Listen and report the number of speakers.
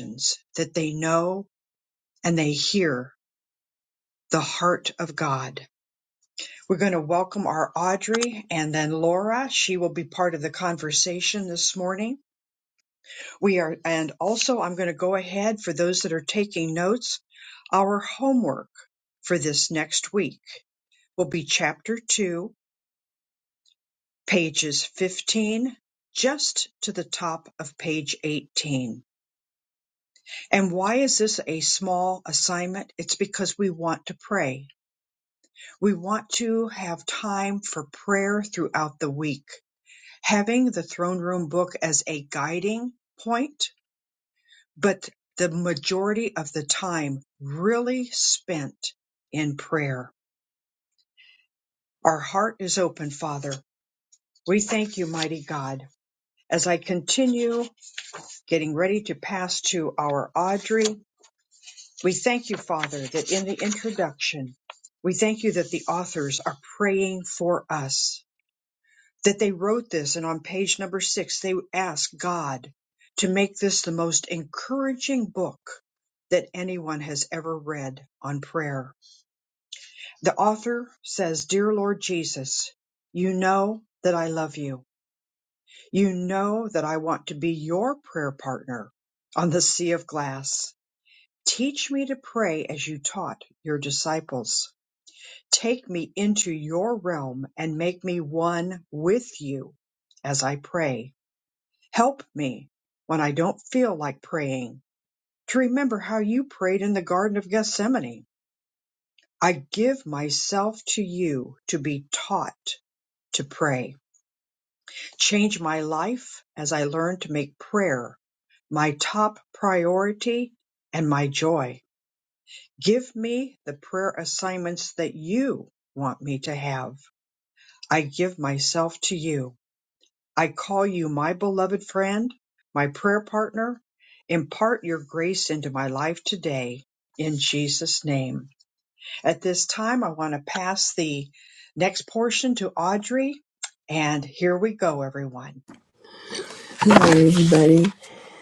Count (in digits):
2